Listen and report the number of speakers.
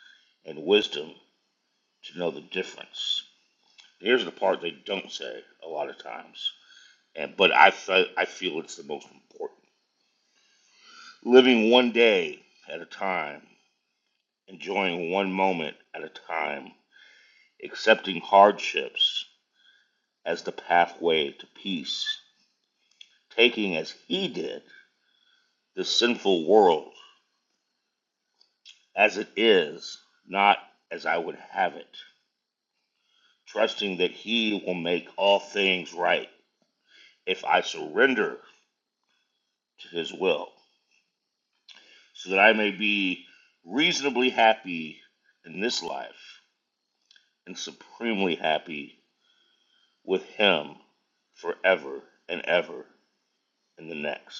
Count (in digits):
1